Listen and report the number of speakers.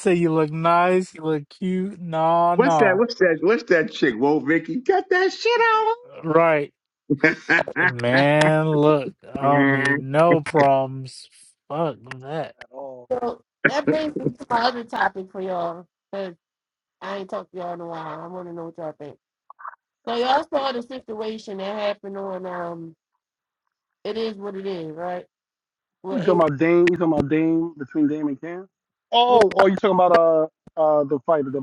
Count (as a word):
four